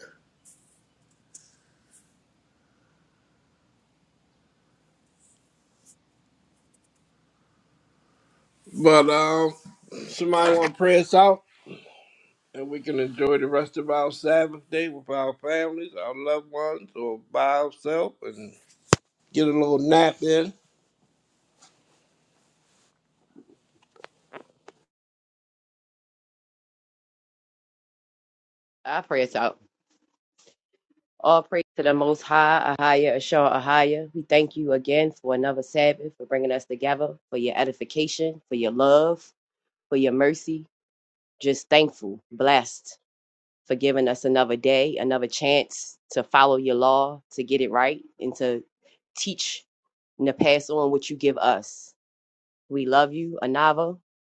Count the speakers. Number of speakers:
two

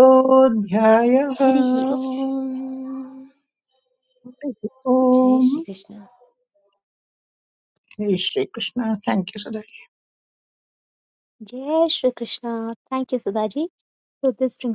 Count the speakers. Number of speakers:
three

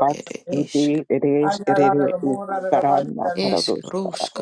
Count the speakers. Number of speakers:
three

